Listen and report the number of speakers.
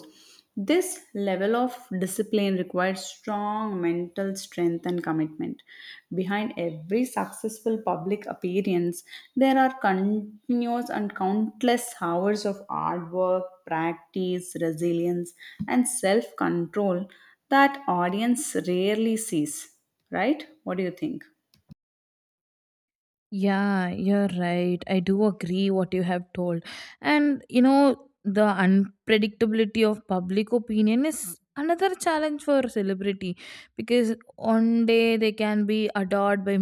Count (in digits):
2